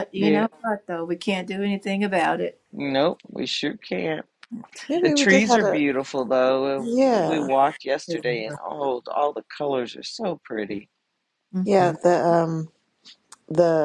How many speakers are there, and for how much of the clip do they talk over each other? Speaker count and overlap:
3, about 19%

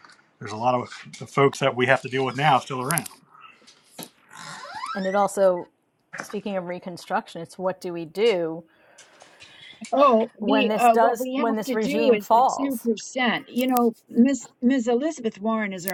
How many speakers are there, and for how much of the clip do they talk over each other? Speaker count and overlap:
3, about 14%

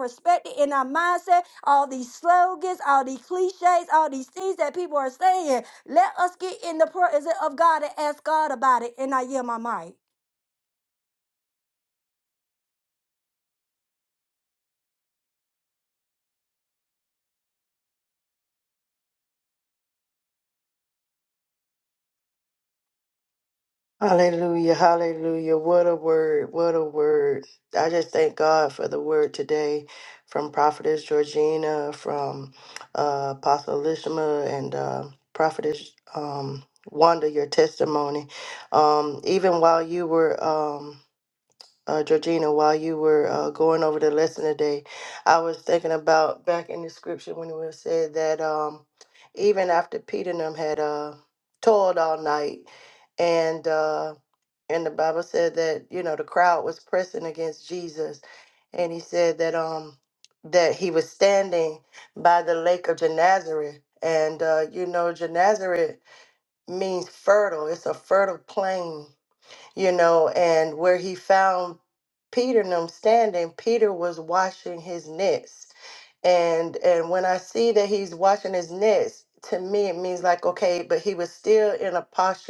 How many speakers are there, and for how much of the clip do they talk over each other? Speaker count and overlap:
2, no overlap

